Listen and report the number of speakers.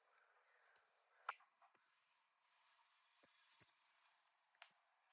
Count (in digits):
0